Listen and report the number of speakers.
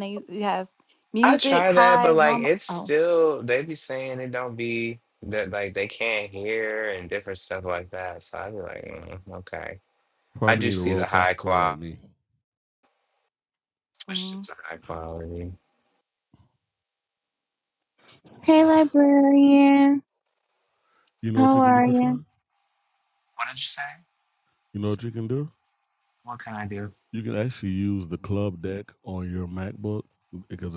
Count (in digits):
4